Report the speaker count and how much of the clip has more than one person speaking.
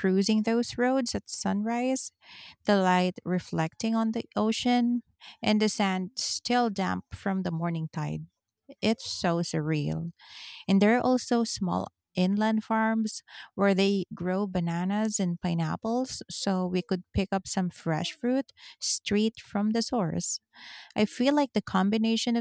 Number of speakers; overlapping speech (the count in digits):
1, no overlap